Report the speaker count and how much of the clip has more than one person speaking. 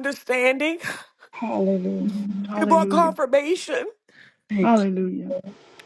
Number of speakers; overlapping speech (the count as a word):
three, about 19%